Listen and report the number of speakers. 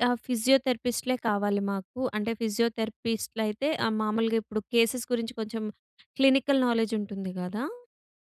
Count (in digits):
1